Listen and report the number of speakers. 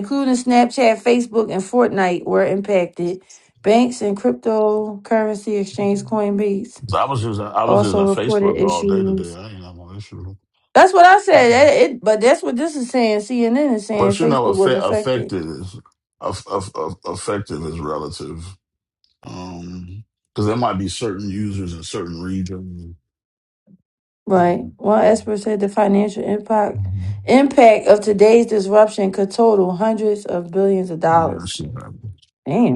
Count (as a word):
two